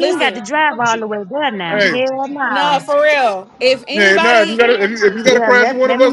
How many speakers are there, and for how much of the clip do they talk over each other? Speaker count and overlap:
3, about 41%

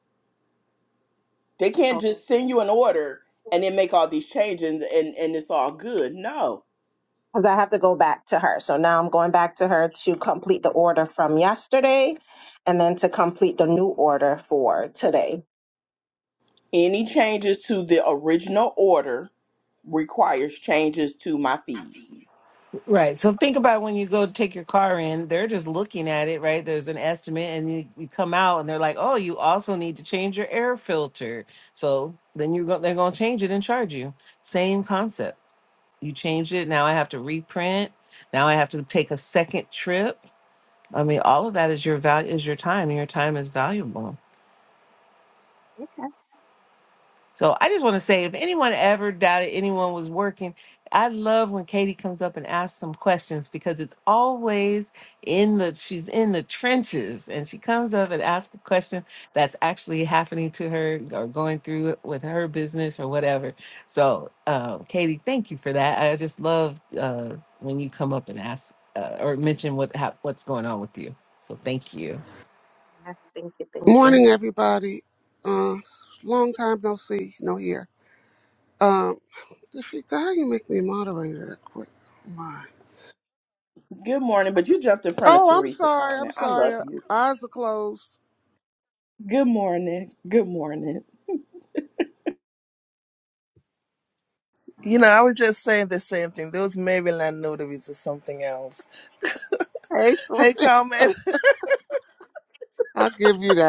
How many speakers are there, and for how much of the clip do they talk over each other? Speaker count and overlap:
5, about 3%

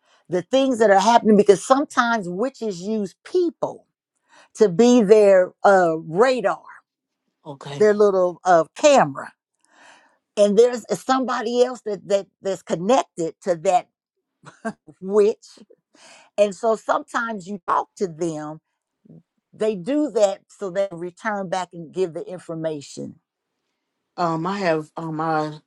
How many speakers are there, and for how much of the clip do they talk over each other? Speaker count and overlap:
2, under 1%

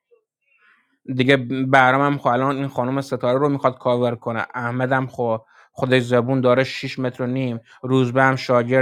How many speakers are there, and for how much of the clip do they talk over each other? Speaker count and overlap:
1, no overlap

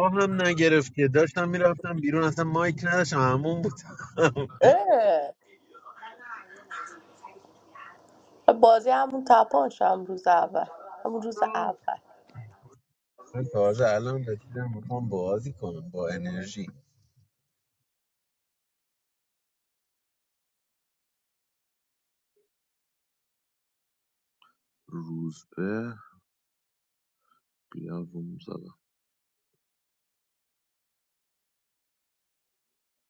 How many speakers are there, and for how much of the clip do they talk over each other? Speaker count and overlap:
3, no overlap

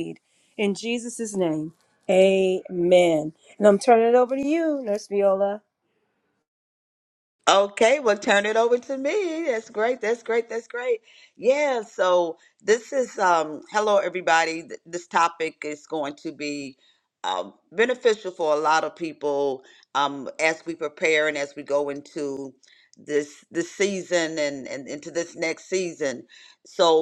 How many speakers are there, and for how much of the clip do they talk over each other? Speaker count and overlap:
2, no overlap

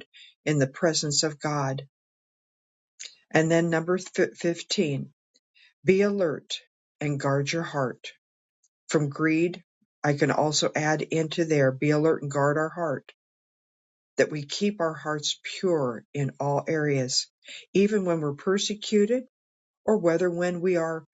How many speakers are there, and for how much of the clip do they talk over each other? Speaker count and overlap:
1, no overlap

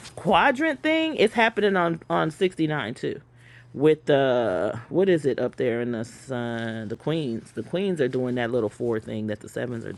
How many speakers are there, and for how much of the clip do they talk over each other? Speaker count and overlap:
1, no overlap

